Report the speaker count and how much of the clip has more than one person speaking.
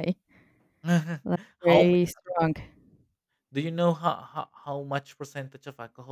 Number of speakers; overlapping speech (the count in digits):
2, about 6%